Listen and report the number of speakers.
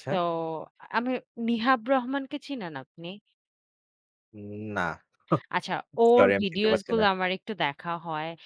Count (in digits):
2